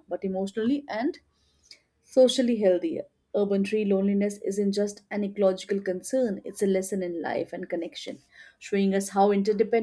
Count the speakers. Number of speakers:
one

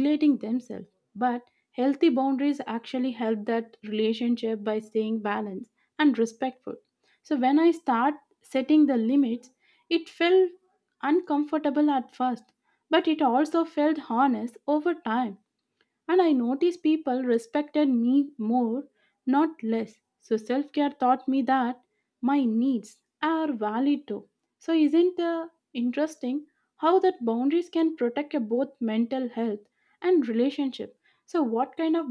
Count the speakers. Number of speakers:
one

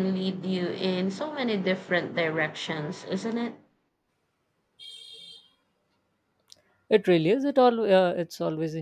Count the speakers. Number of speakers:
two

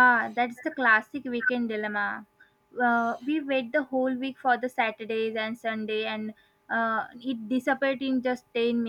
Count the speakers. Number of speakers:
one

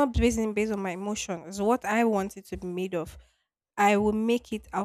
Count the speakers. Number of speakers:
one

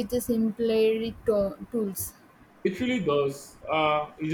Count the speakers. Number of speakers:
two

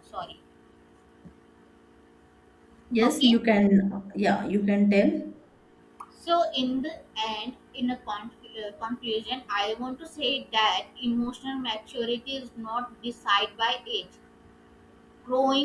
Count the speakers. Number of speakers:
two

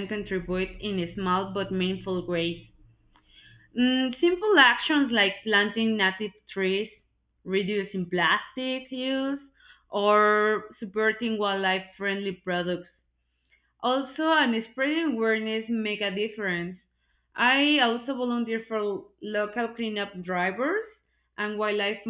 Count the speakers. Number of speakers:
one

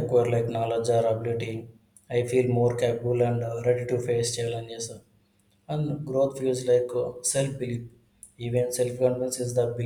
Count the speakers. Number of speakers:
one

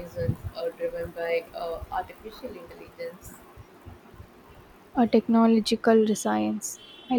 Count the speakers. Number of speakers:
two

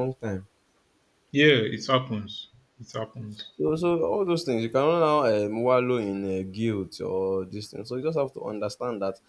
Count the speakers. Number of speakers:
two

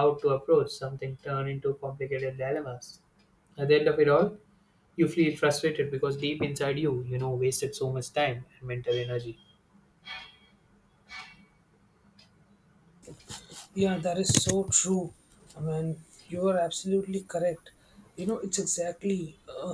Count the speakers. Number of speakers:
two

